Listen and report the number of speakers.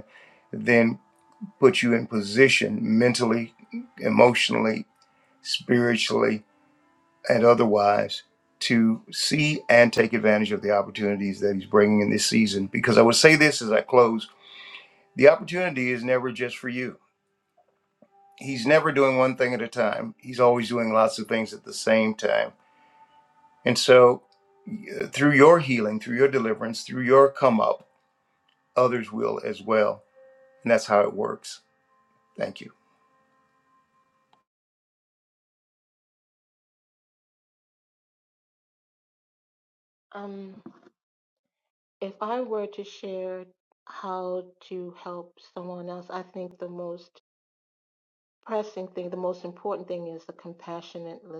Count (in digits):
2